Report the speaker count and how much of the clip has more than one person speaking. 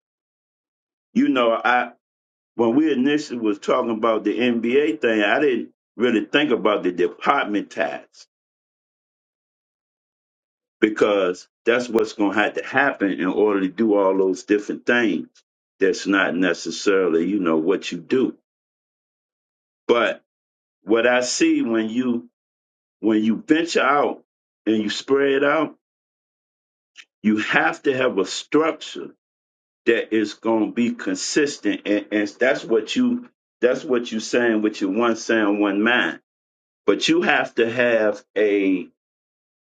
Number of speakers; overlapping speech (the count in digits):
1, no overlap